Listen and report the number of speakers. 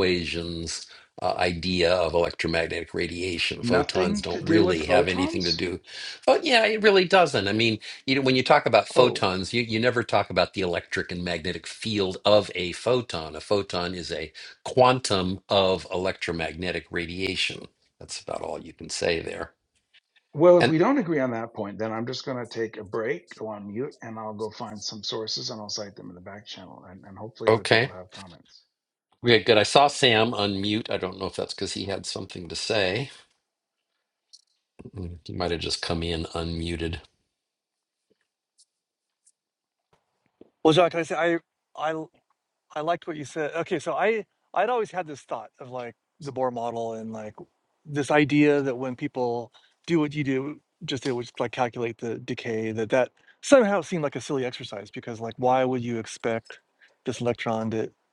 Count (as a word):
three